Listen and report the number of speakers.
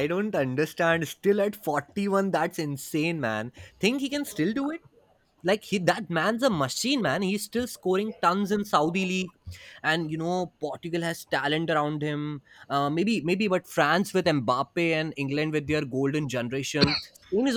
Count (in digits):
1